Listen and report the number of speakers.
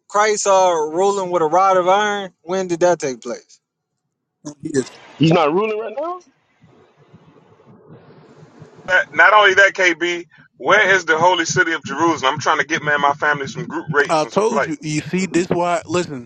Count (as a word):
four